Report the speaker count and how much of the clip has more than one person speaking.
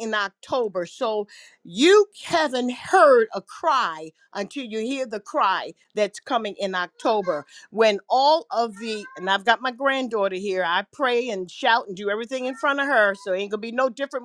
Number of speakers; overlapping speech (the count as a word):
one, no overlap